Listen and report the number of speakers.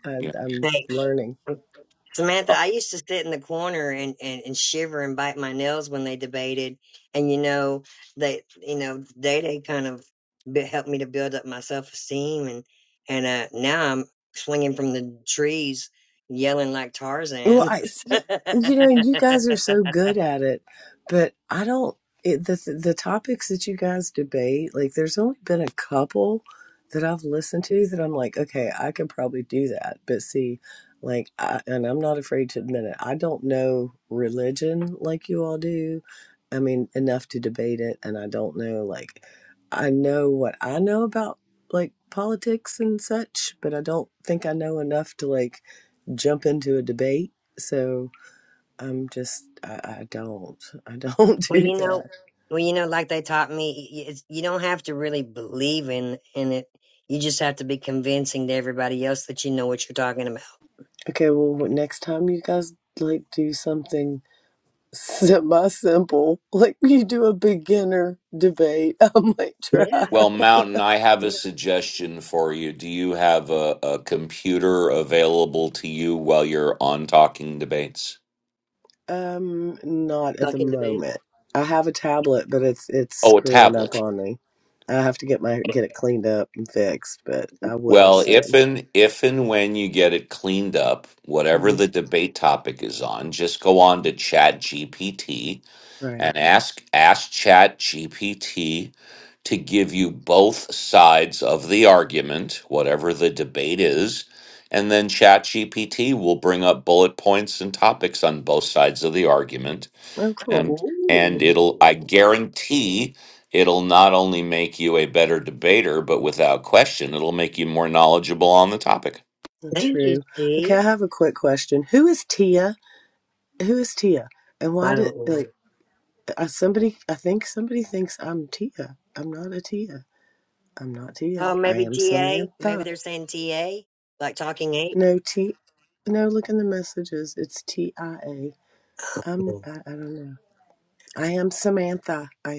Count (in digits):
3